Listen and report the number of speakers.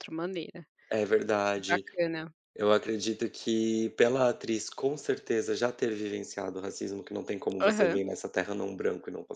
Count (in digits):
2